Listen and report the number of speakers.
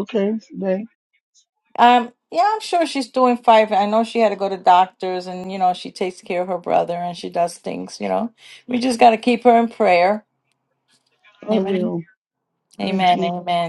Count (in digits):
2